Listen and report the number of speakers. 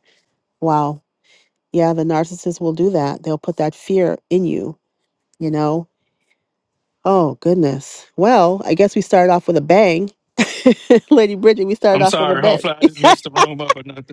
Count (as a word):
two